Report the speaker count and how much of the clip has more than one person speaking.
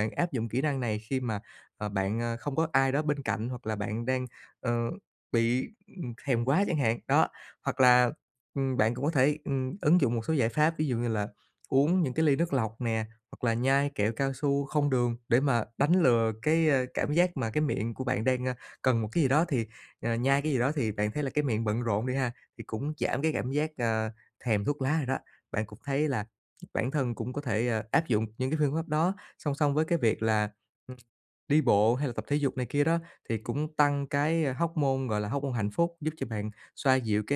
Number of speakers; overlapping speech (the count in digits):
1, no overlap